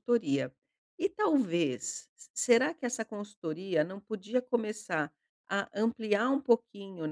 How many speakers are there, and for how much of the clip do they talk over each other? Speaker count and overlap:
one, no overlap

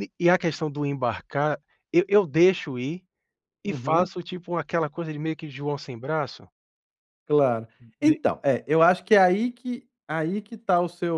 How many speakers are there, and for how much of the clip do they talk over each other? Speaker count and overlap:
two, about 5%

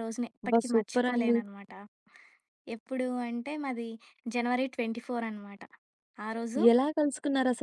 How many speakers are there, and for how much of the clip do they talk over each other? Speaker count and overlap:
two, about 13%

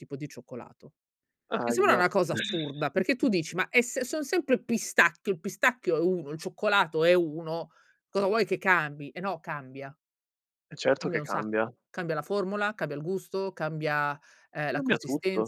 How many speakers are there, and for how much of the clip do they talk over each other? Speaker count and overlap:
two, about 10%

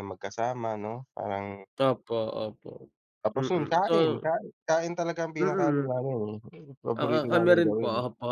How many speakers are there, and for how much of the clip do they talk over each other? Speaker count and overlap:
two, about 31%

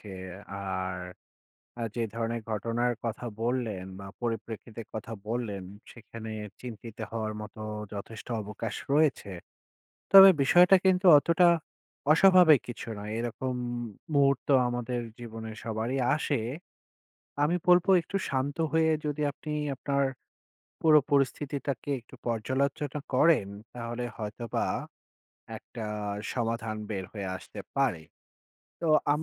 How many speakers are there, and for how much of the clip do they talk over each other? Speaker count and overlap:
one, no overlap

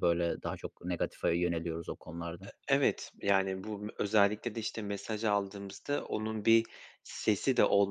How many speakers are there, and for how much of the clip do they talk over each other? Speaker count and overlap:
two, about 1%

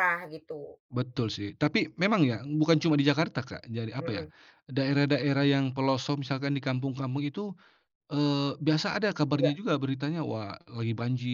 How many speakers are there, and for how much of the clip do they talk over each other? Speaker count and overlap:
two, about 4%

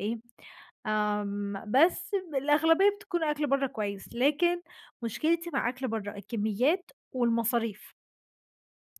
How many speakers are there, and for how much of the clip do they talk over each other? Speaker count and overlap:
one, no overlap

